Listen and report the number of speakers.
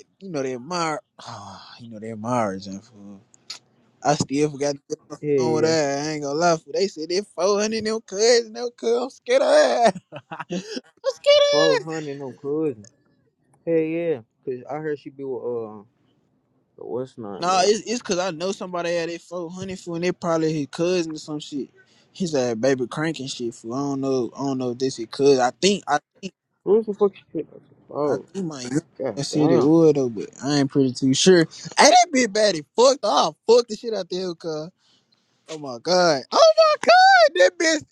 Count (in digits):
2